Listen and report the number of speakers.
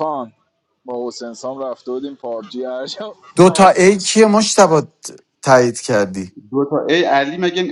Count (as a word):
three